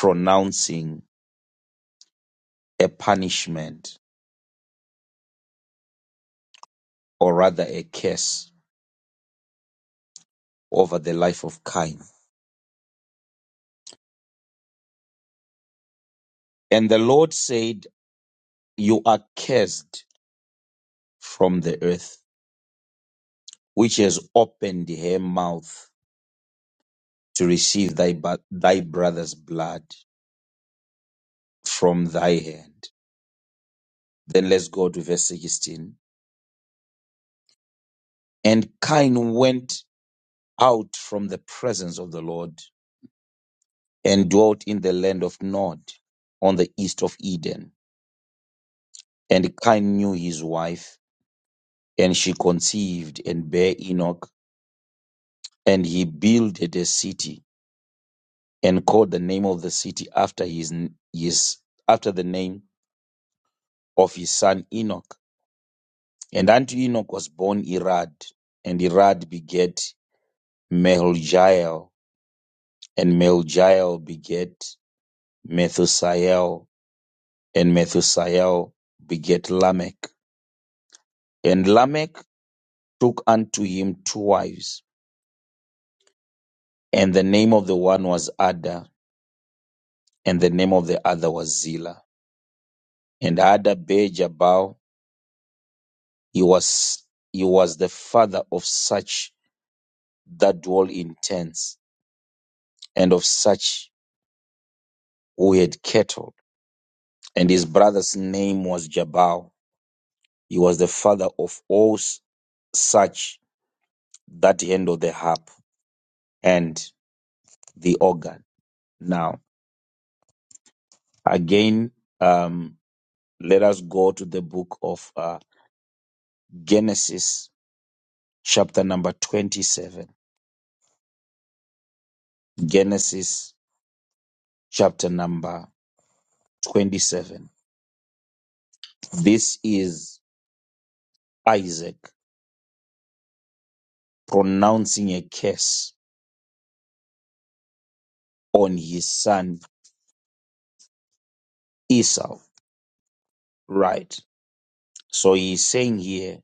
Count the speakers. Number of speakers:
one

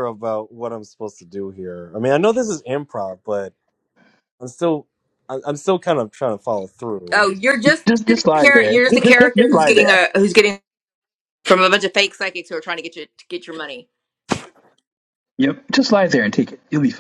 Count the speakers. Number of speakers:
three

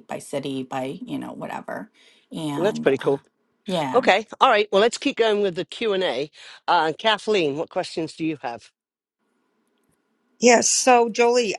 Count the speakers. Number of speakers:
three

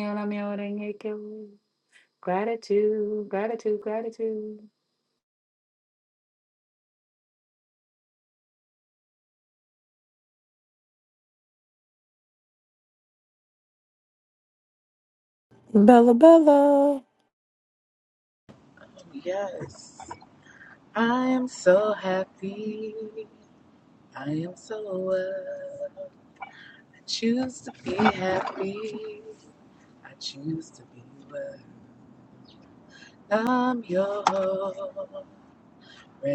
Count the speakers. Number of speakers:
three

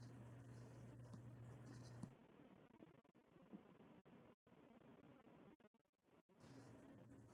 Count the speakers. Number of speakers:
zero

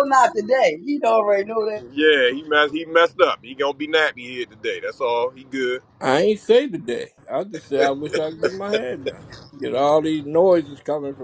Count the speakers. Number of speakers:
three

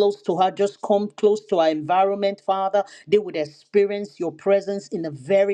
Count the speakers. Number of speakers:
one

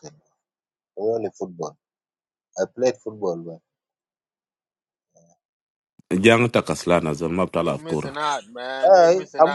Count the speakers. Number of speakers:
three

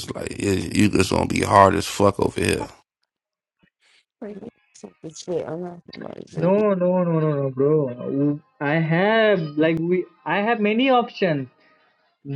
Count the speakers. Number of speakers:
three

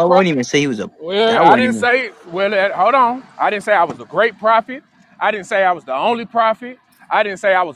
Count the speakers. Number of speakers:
two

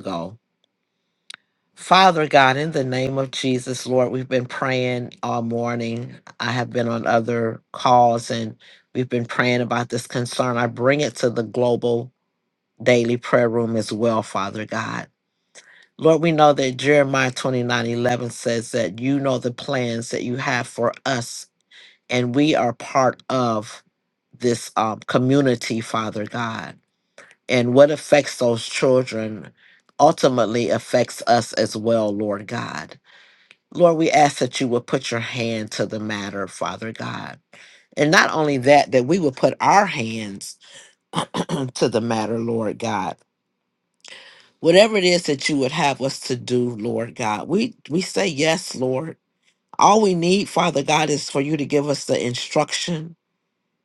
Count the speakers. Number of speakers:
one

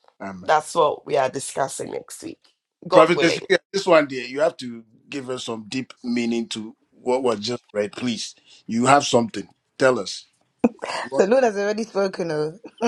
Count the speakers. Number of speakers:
three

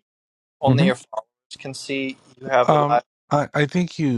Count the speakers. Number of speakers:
two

